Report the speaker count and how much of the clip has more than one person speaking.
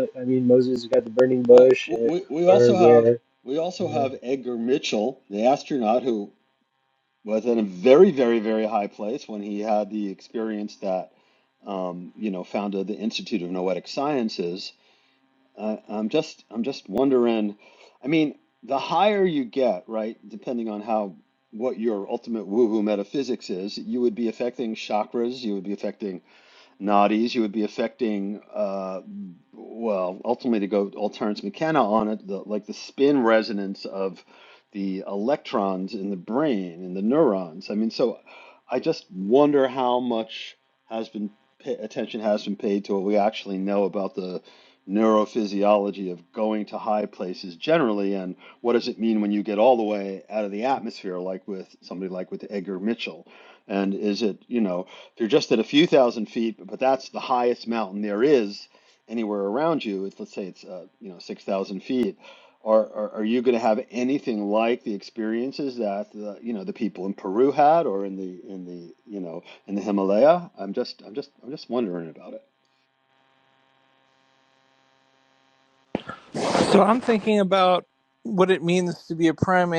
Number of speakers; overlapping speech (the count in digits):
3, about 2%